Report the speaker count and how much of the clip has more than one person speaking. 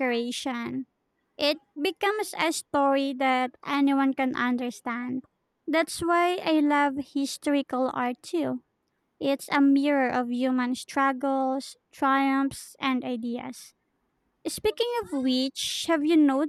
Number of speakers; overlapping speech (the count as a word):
one, no overlap